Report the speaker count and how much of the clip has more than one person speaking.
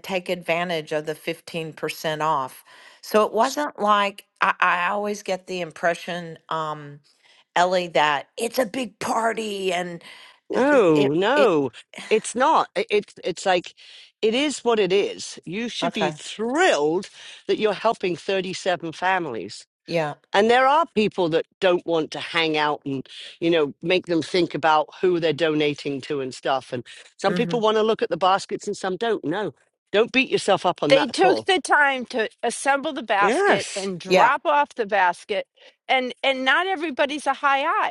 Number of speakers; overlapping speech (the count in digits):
3, about 8%